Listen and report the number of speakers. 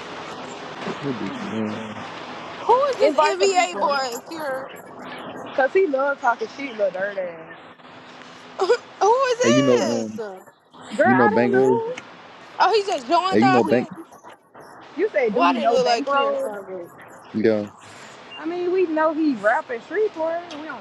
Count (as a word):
three